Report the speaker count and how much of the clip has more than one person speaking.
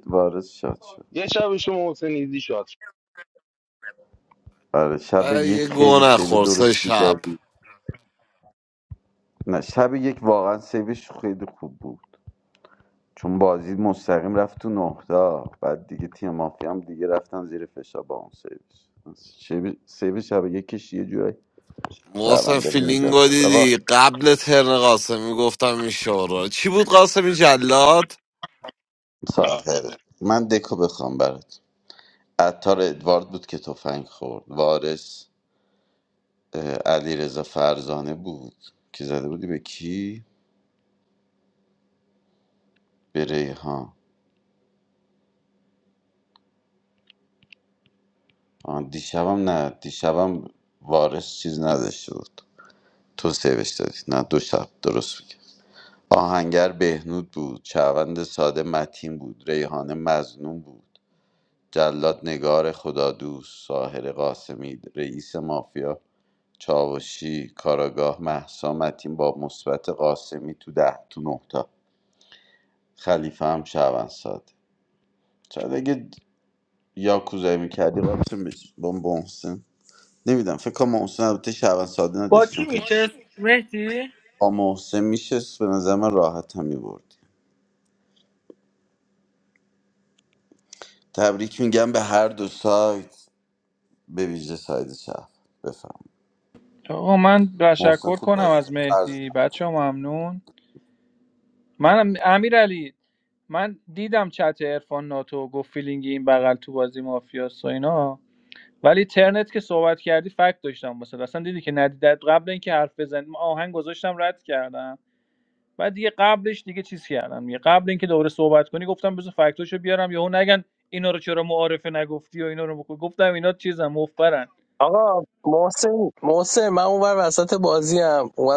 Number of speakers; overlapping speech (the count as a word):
six, about 4%